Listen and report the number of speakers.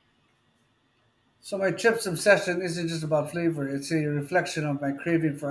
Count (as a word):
one